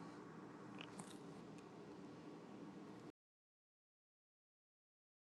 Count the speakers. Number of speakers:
0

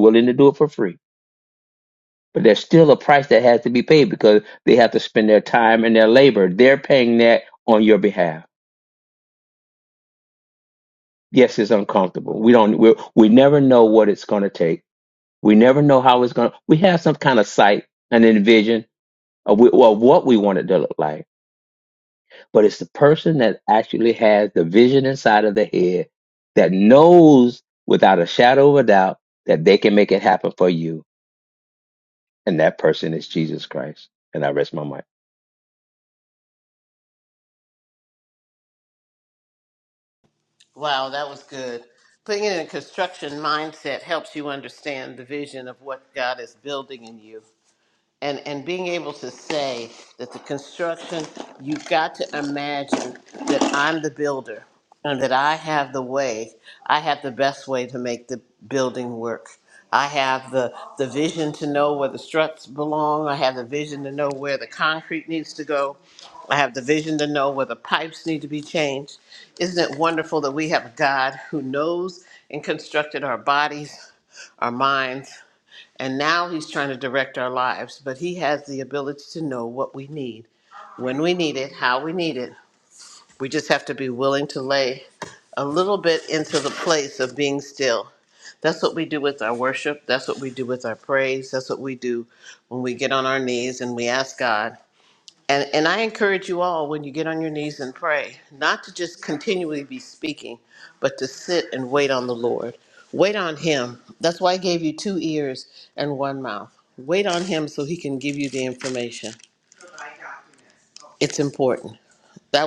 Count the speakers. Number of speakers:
2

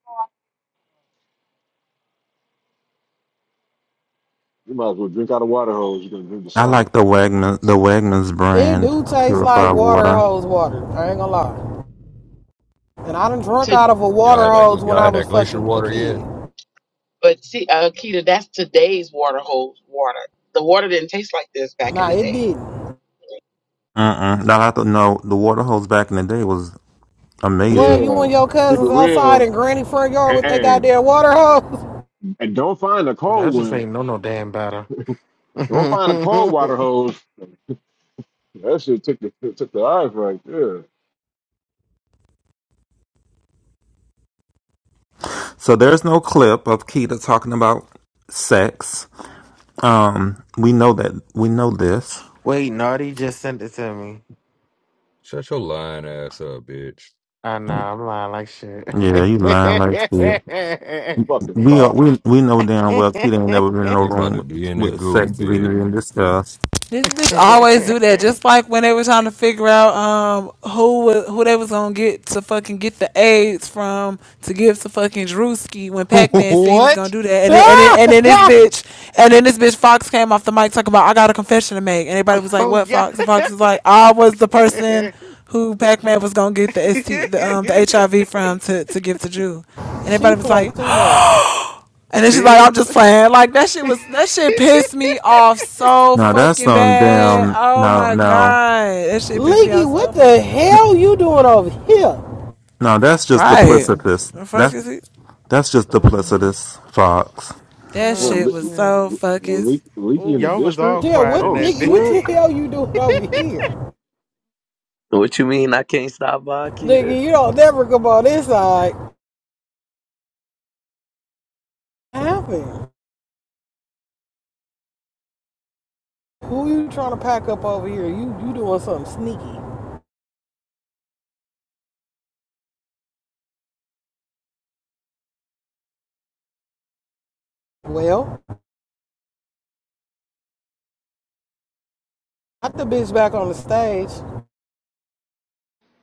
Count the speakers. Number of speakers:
8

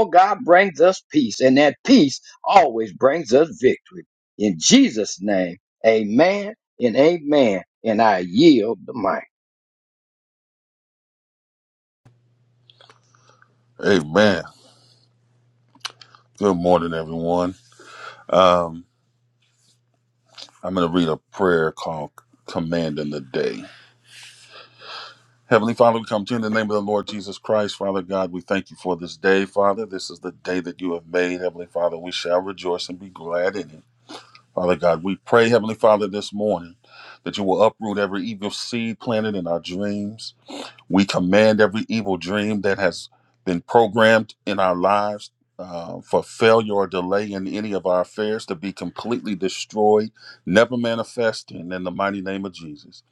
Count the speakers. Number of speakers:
2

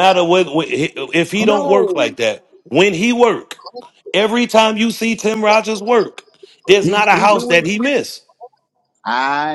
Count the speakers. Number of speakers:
2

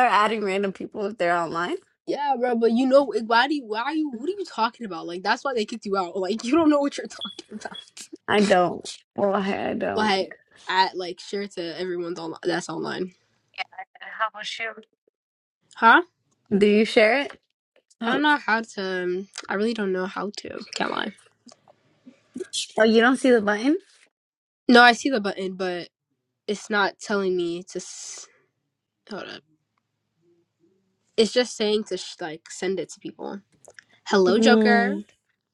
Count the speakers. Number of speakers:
2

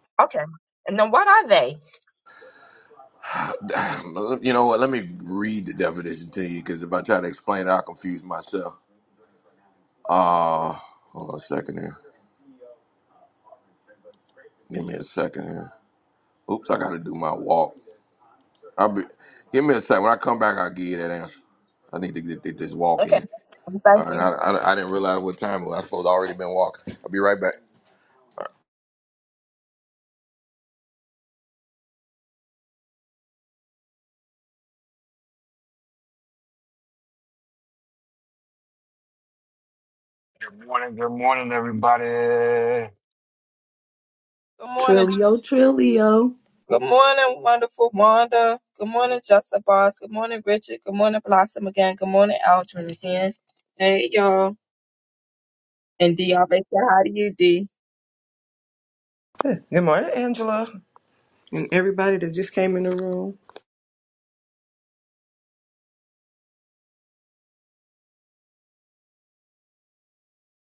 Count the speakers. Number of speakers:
5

